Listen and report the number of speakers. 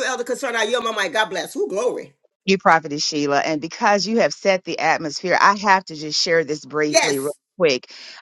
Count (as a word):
two